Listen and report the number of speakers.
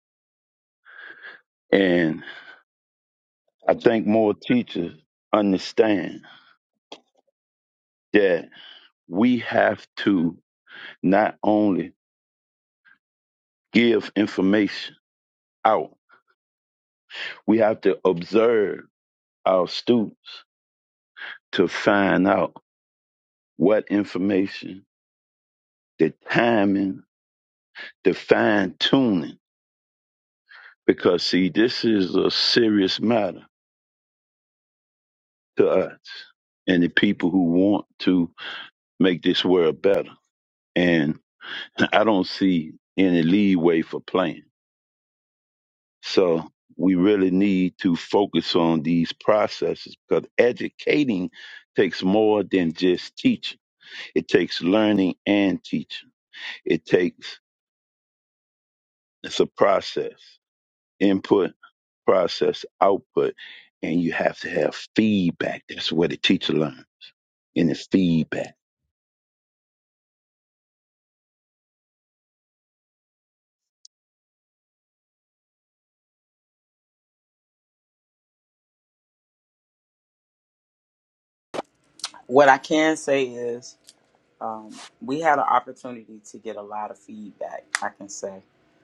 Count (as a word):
two